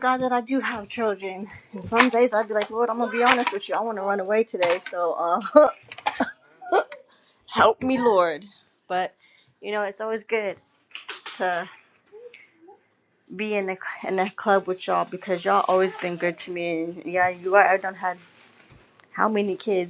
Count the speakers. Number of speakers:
1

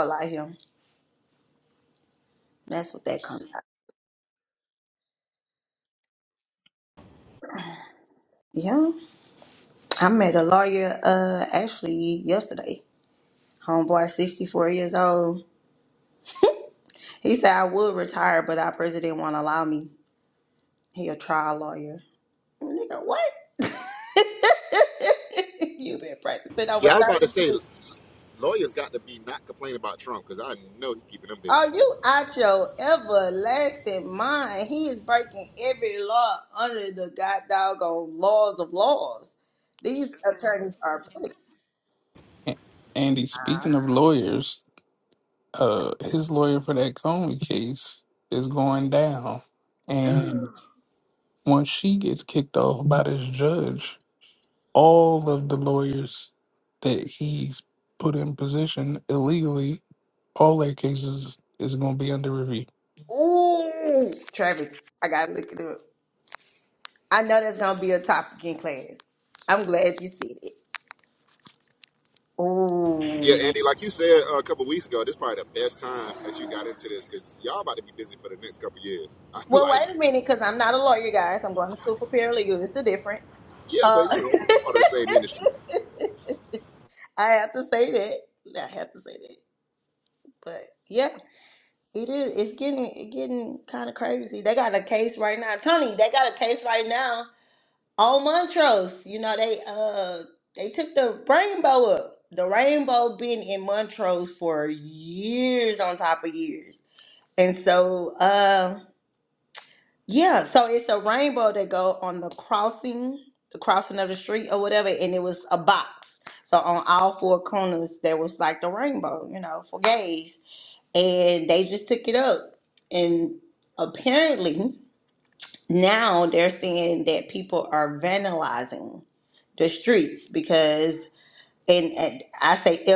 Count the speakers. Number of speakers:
3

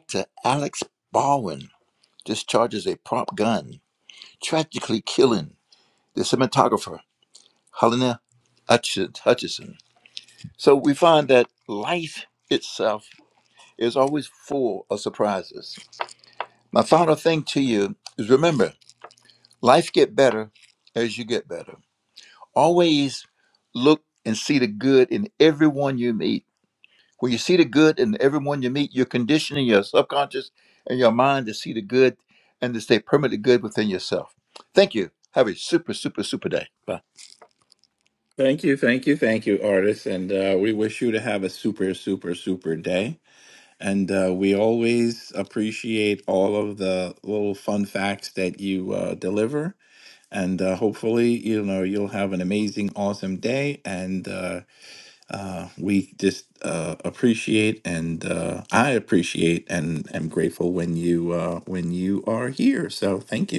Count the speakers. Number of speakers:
2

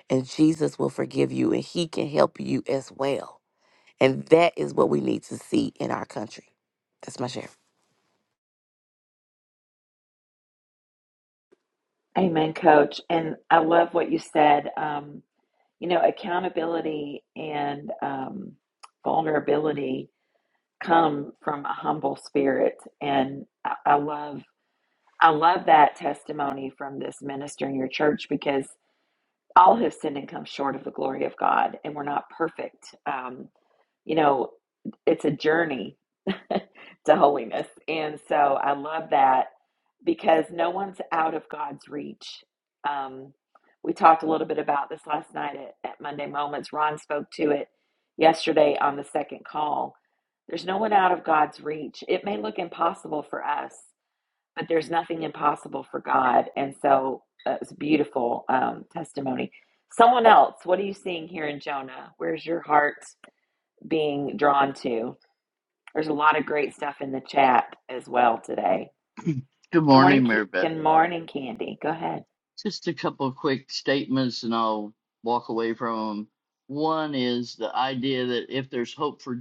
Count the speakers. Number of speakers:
3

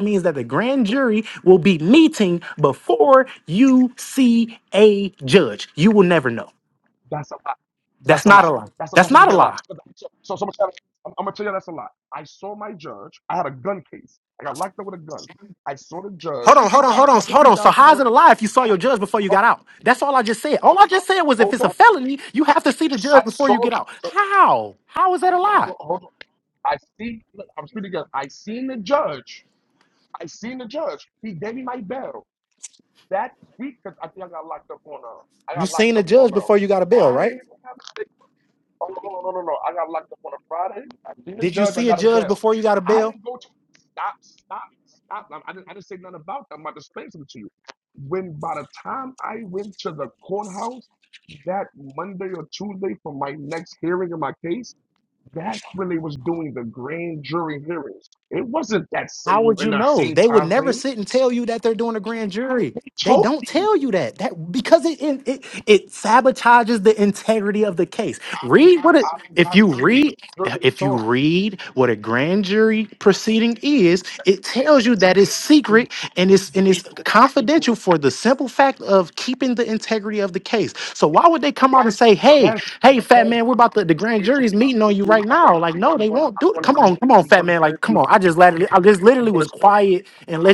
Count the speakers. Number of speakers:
2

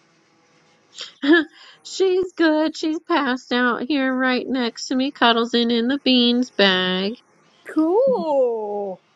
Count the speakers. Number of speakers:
2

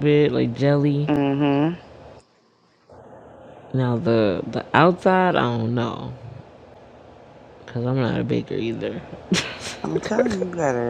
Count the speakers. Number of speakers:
2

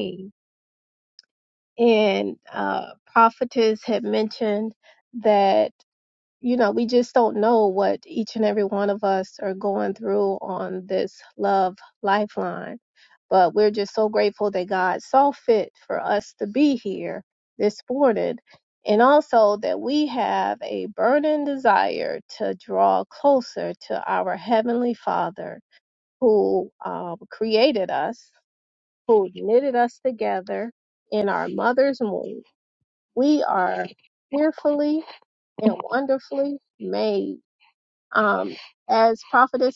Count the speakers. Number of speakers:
1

